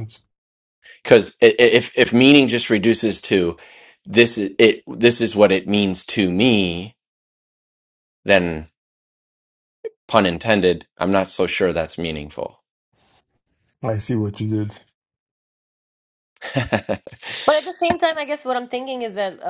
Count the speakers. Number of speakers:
3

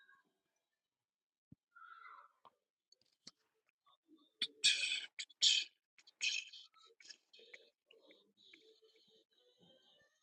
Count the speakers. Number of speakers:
0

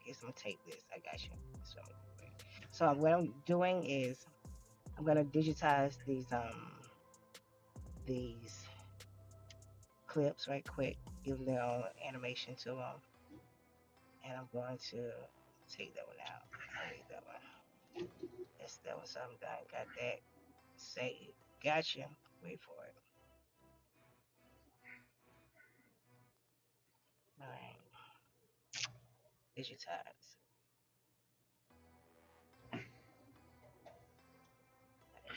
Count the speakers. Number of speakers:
1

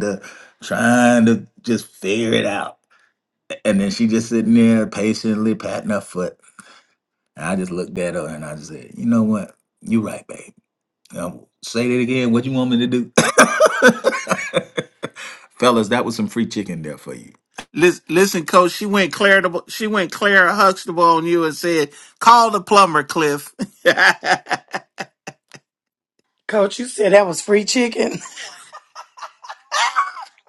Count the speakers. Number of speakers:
3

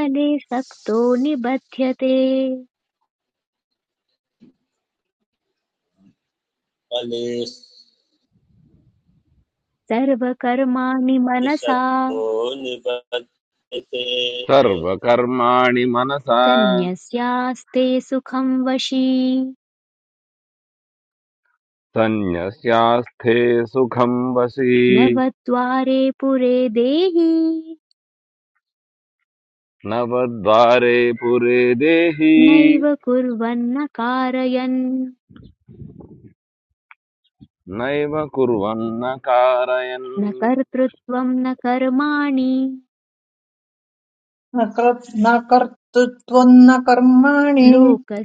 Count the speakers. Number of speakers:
4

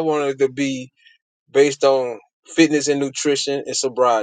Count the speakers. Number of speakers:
1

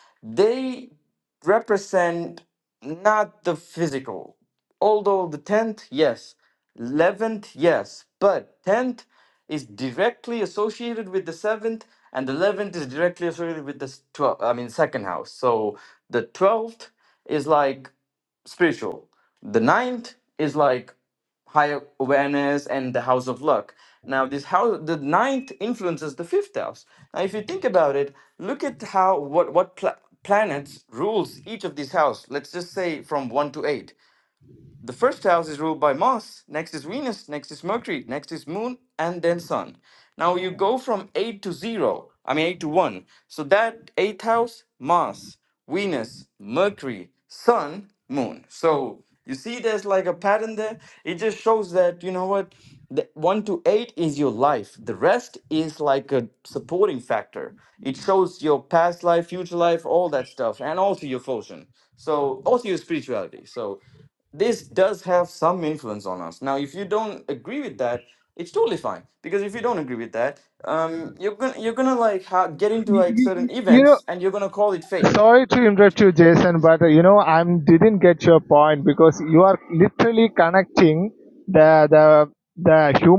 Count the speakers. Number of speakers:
2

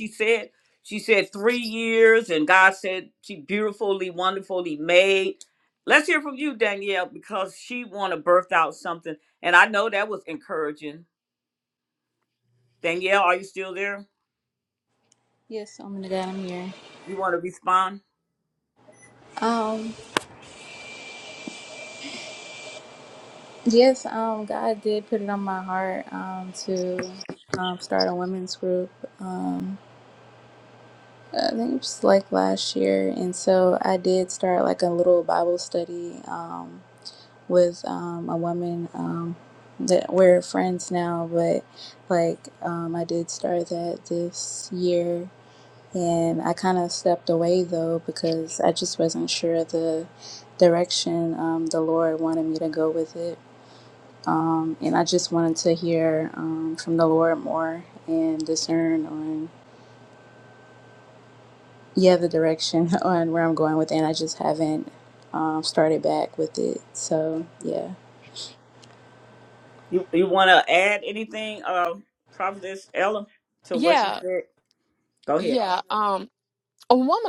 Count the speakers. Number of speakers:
3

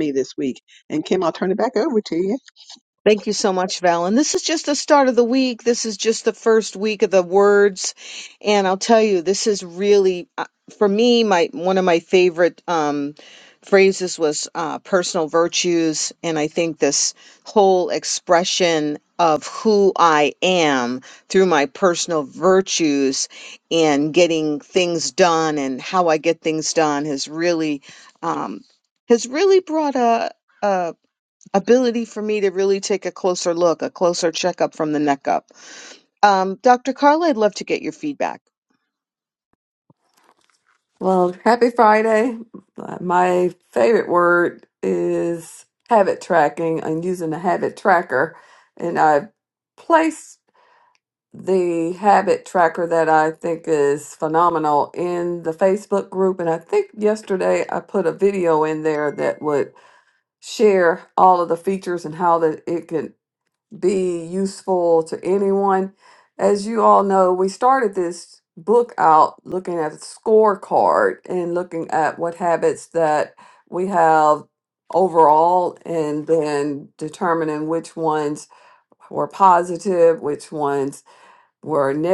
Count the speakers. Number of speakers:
3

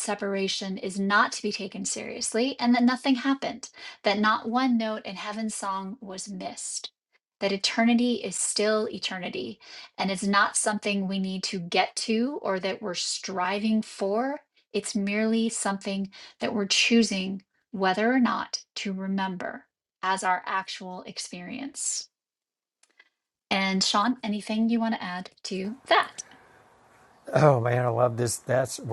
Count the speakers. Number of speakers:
2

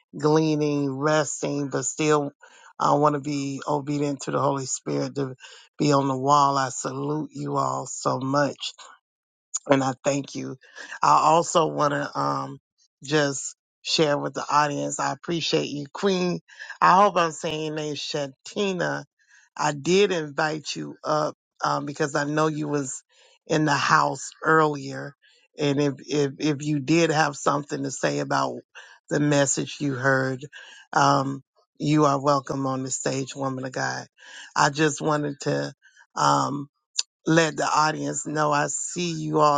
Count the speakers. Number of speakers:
1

